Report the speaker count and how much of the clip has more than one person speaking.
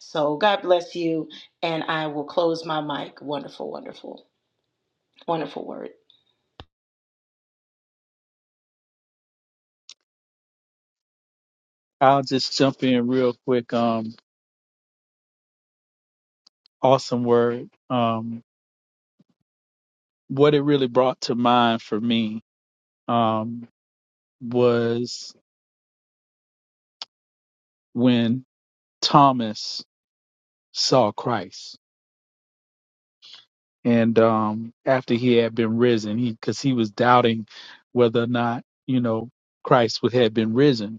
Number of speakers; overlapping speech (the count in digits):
2, no overlap